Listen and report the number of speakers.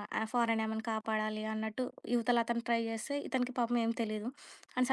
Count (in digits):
1